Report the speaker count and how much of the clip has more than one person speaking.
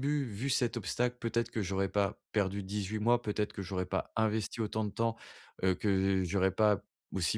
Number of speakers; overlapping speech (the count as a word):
one, no overlap